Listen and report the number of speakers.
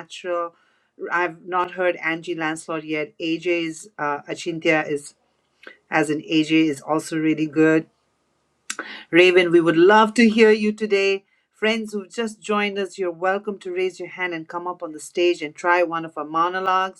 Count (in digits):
1